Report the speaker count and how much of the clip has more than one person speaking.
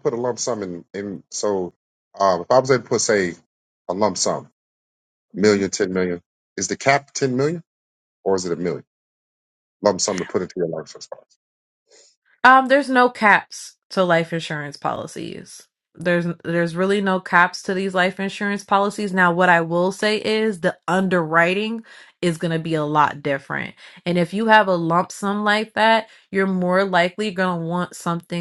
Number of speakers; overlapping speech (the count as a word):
two, no overlap